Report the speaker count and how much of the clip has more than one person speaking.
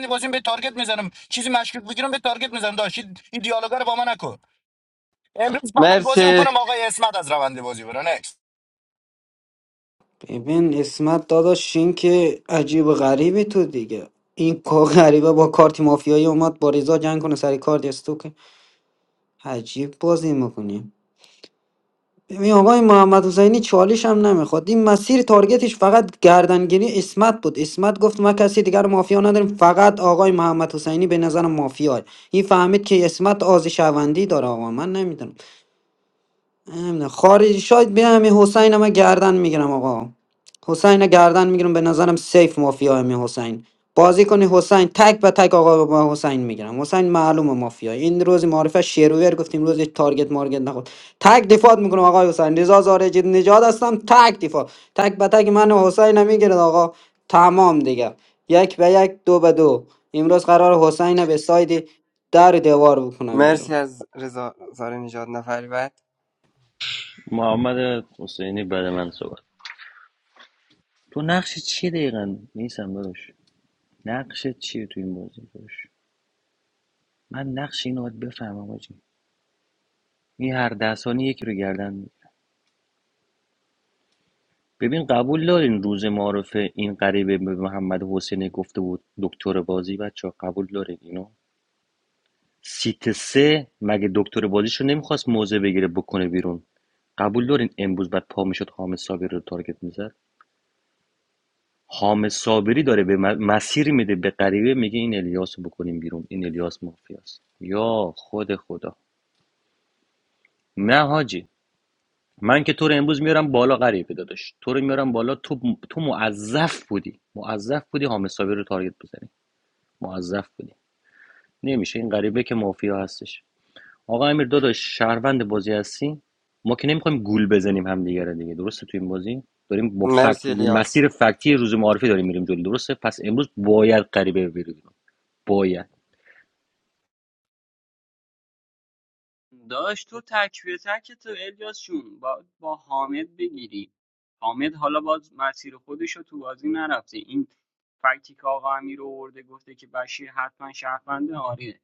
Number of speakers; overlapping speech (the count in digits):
5, about 1%